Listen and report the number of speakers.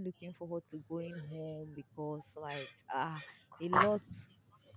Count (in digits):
1